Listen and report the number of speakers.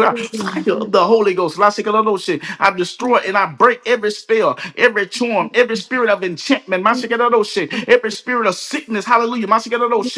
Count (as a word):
one